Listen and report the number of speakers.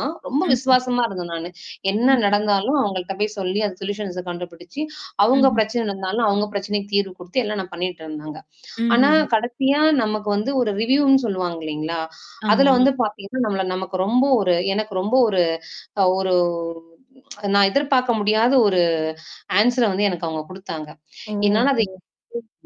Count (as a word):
two